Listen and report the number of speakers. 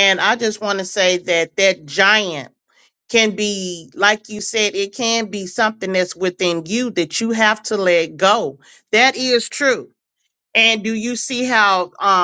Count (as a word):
one